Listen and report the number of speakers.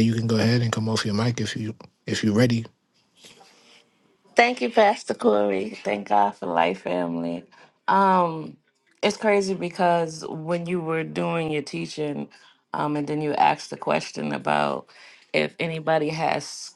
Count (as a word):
two